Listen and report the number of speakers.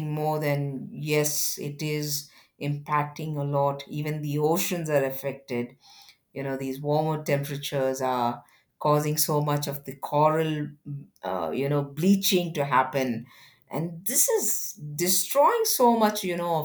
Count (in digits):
1